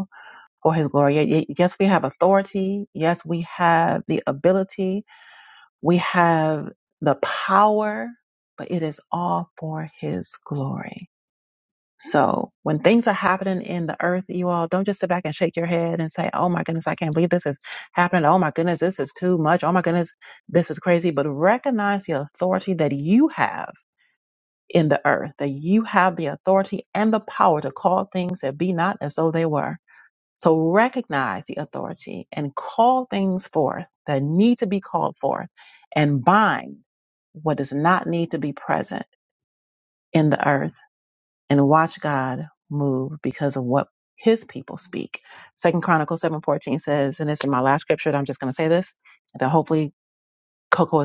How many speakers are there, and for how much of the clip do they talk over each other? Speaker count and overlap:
1, no overlap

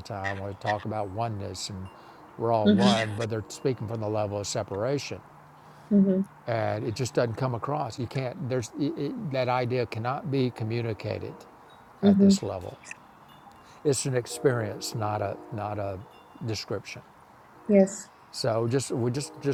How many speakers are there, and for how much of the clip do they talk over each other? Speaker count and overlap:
2, about 4%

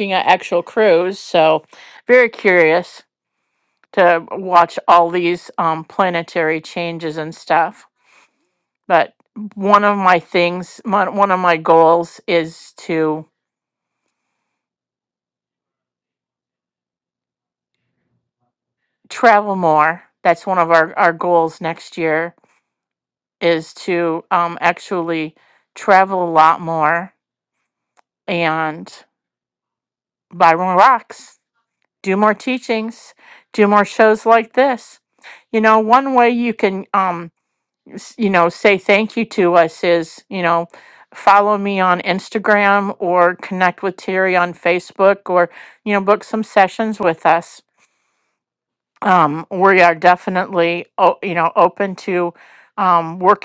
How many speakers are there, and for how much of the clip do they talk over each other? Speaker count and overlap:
1, no overlap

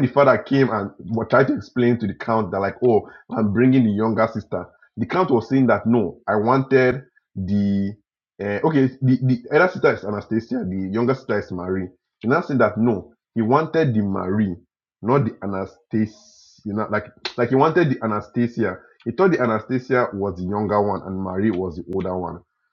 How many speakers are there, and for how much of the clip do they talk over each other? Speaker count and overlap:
1, no overlap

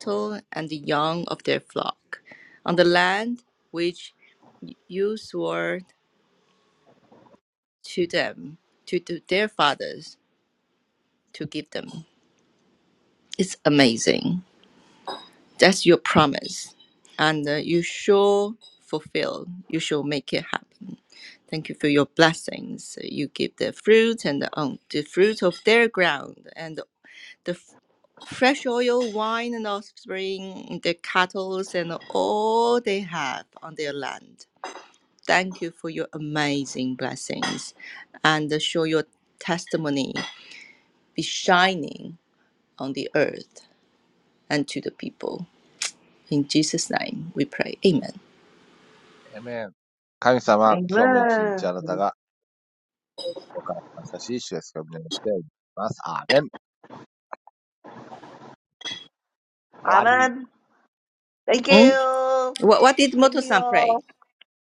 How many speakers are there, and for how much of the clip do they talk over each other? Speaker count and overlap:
3, about 3%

